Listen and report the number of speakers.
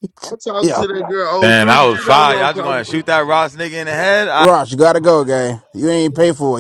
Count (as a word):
three